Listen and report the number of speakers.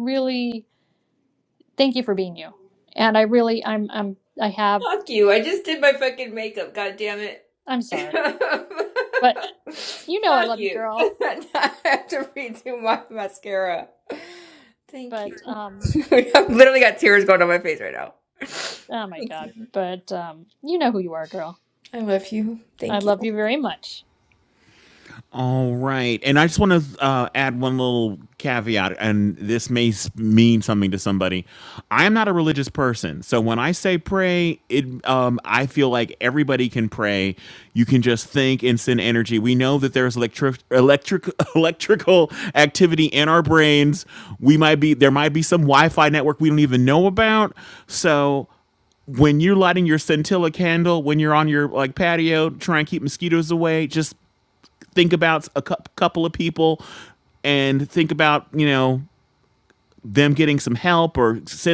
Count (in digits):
3